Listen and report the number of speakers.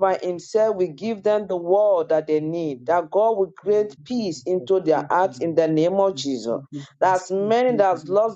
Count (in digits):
1